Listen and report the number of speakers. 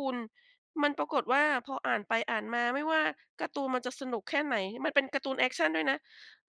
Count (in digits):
1